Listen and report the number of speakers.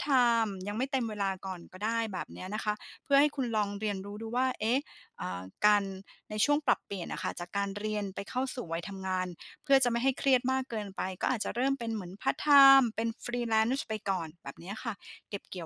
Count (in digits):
1